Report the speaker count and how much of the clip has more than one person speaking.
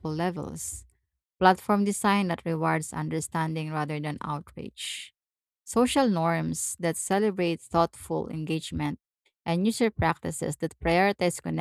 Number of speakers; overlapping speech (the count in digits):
1, no overlap